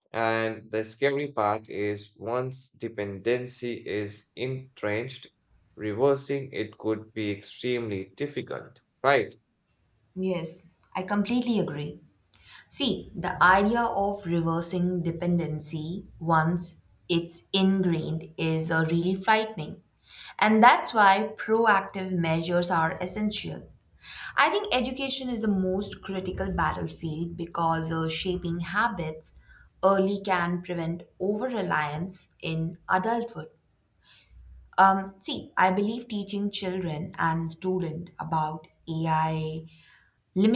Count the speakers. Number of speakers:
two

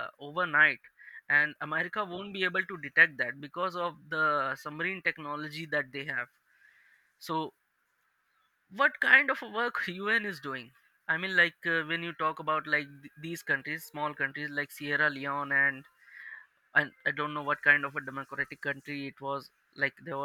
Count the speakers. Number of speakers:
one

